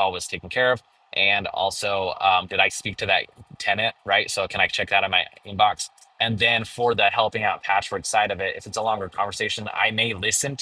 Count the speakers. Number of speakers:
1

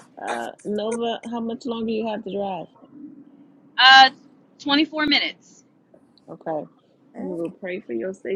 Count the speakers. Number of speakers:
2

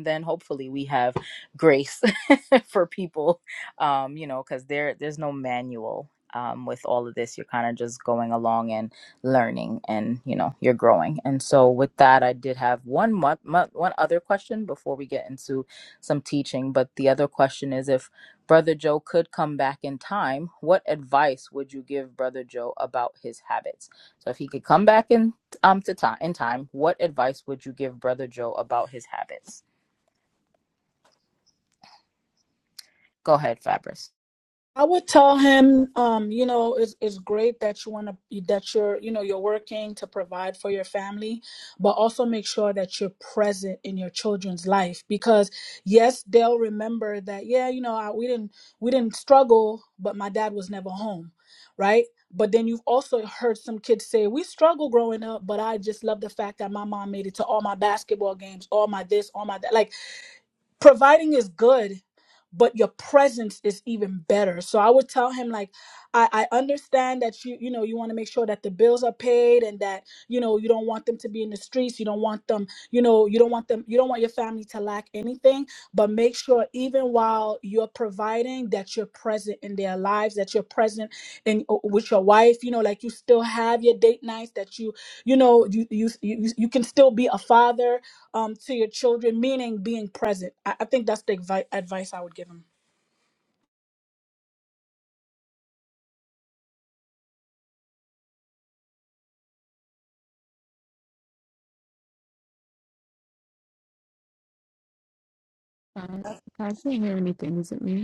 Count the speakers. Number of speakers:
3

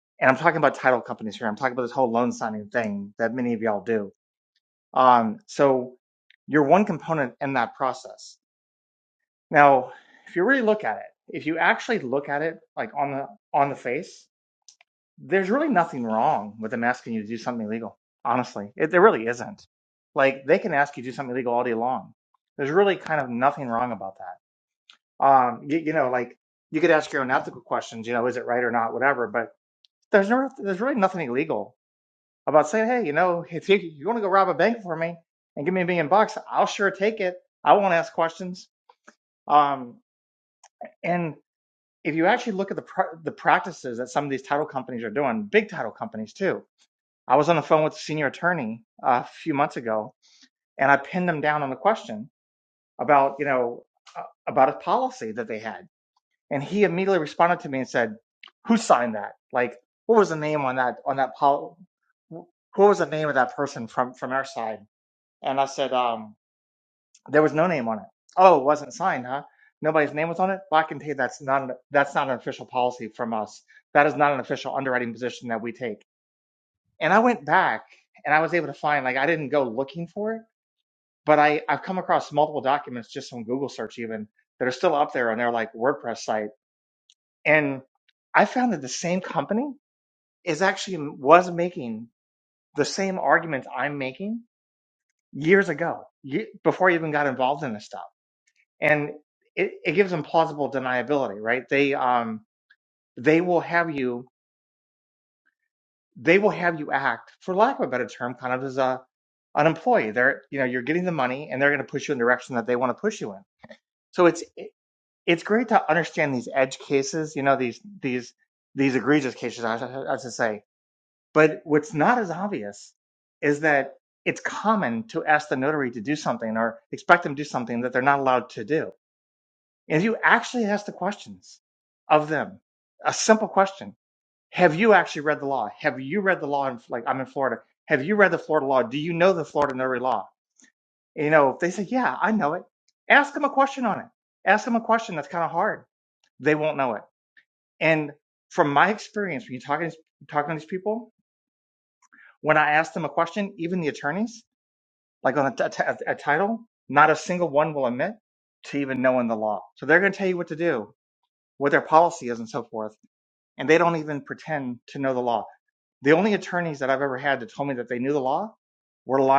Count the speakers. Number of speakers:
1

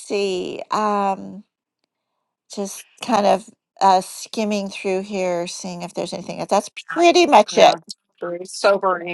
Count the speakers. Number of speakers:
2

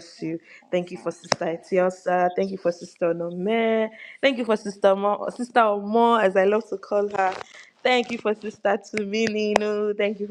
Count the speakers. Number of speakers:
1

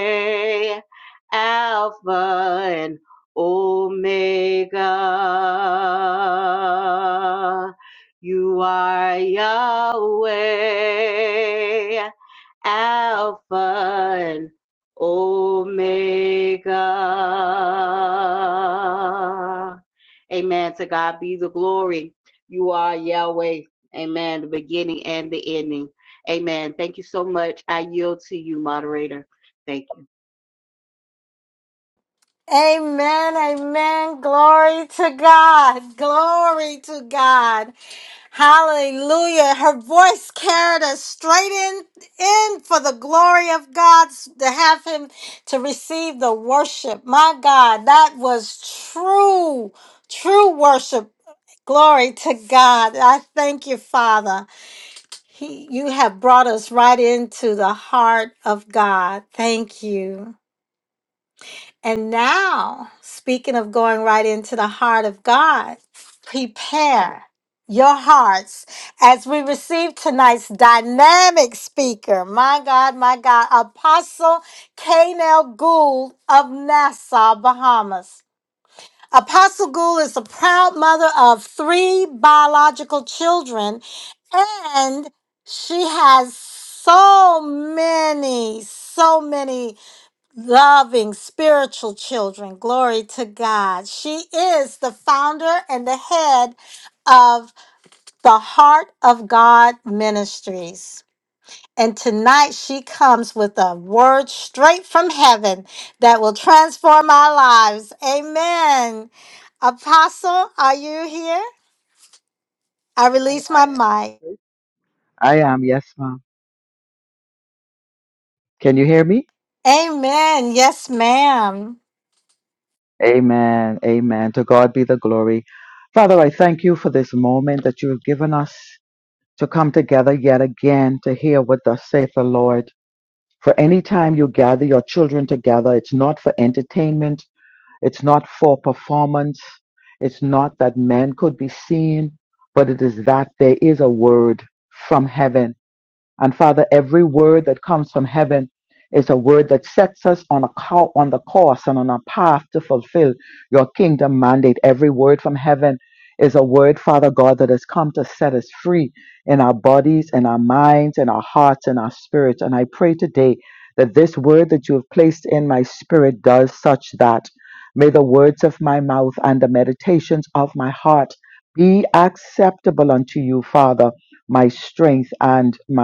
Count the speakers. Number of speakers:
3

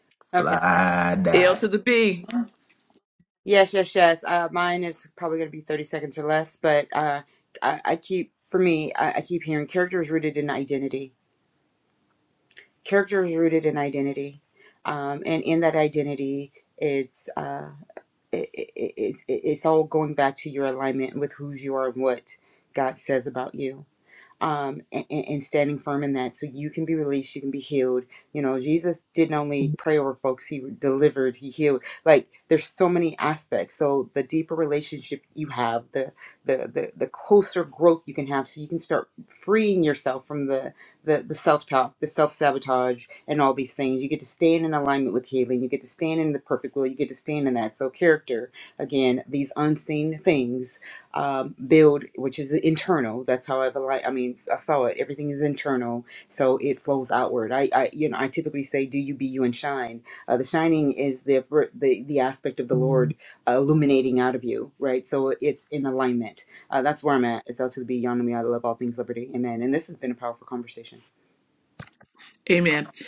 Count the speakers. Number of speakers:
3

